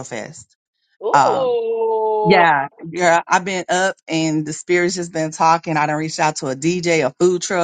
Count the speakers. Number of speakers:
2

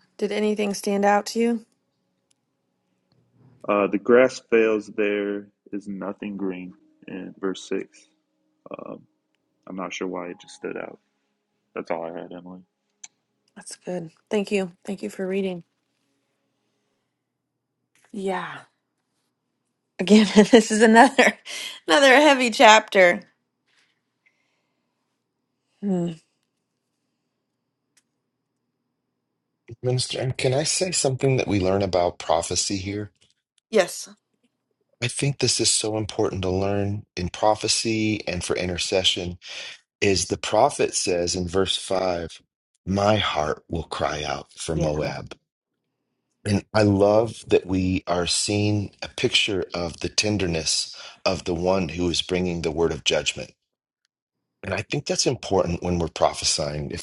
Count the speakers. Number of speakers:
3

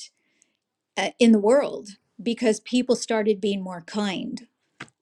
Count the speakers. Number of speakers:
1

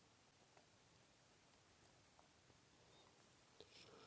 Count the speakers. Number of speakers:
0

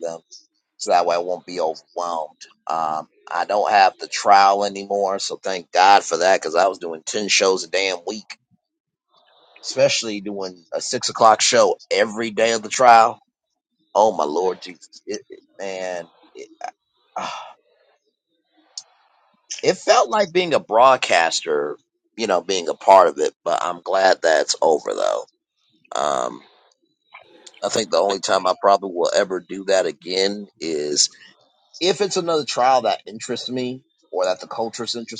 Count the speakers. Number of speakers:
1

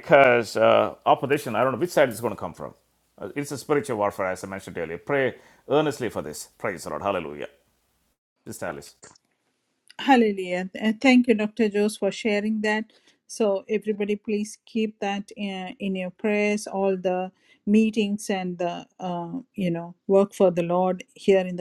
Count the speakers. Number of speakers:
2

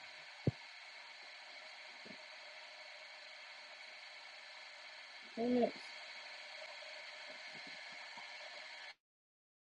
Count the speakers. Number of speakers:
0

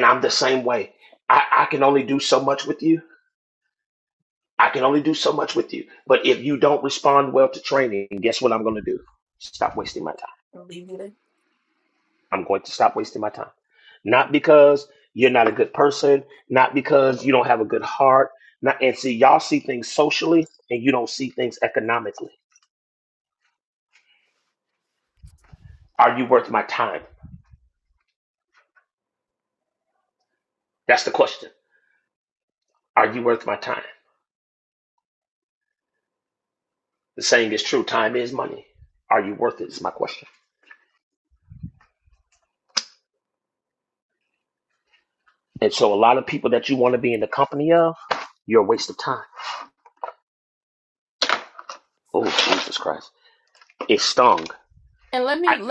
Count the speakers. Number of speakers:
2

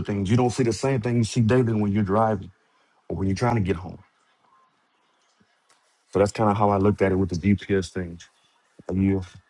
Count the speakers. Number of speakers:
1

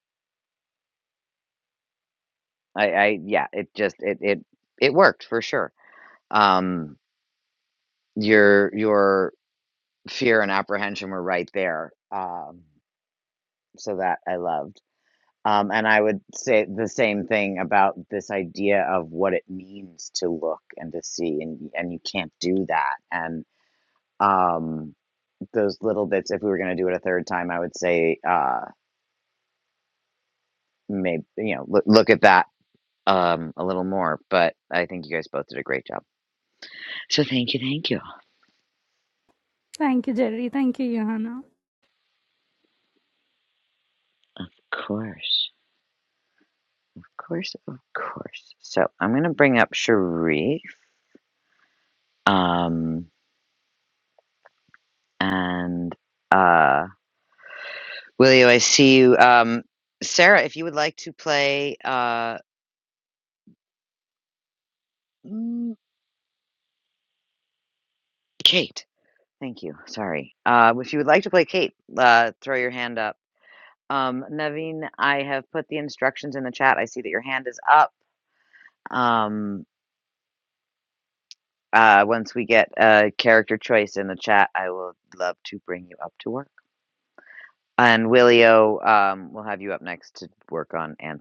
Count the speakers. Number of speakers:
2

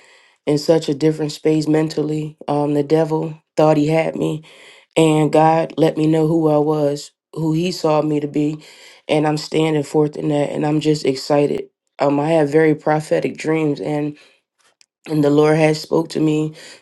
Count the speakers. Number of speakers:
1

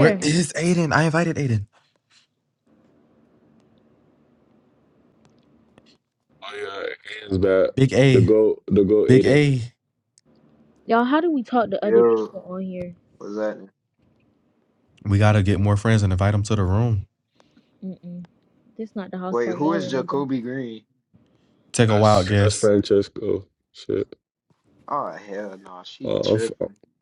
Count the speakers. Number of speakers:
4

